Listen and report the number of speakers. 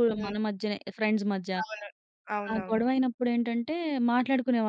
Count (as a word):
two